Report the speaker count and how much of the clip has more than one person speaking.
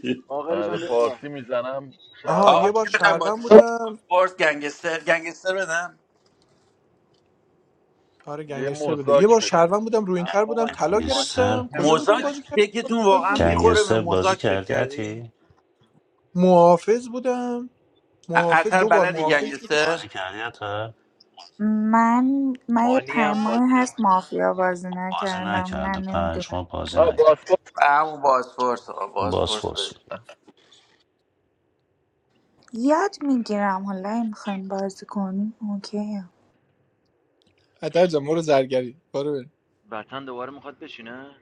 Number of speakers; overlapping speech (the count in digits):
6, about 31%